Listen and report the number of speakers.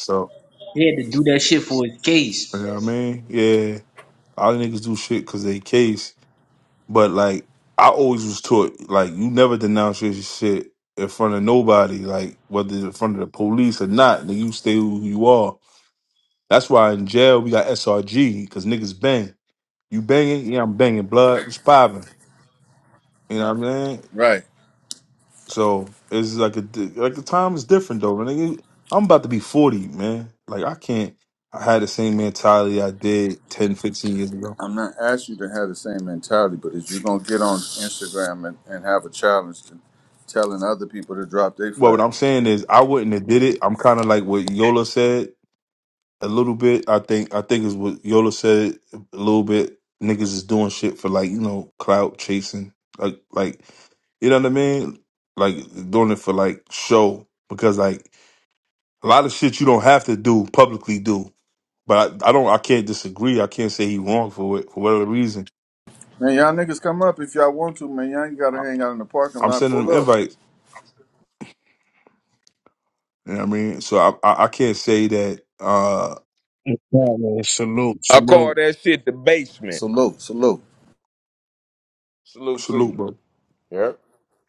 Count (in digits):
5